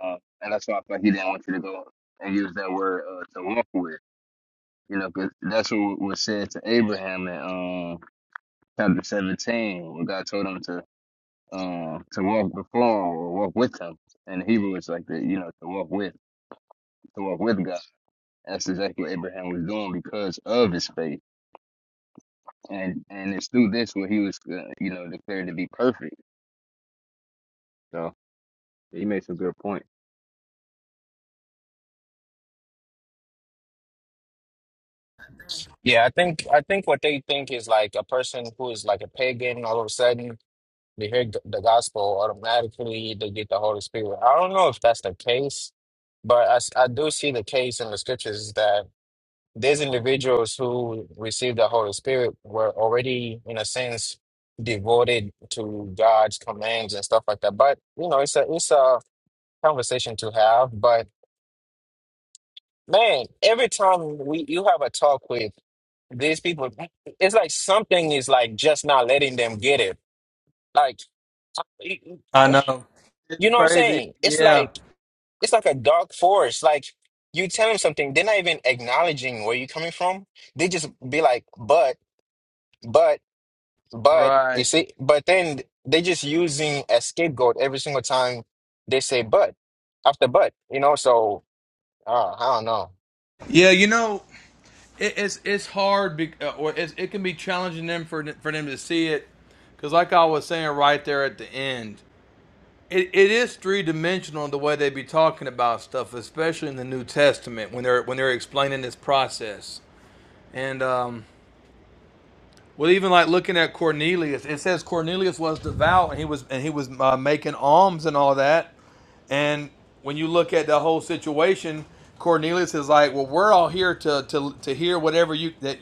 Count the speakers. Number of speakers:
three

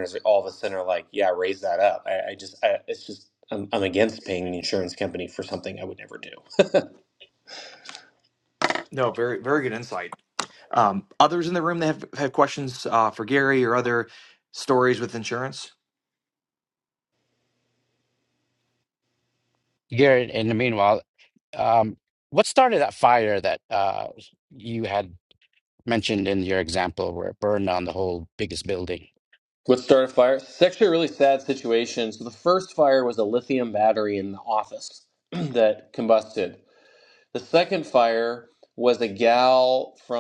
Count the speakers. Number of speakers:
three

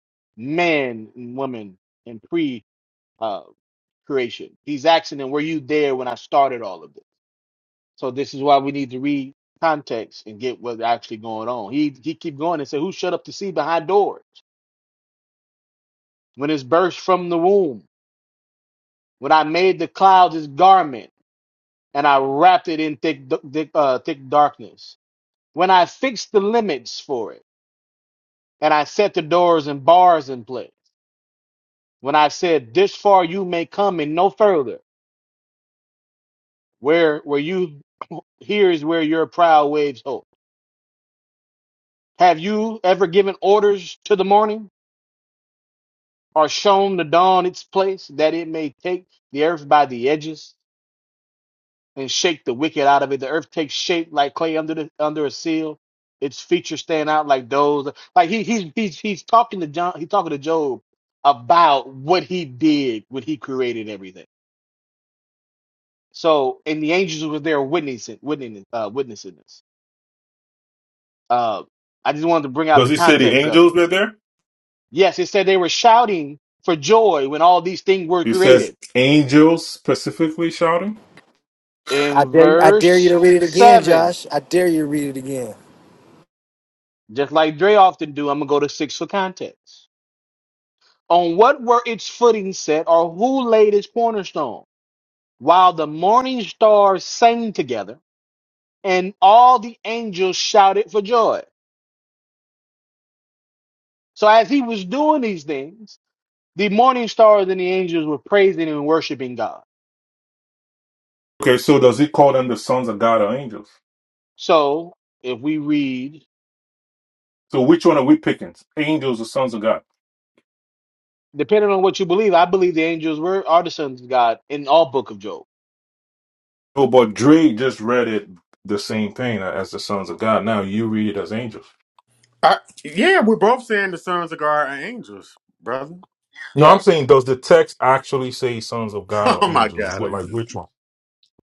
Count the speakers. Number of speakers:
four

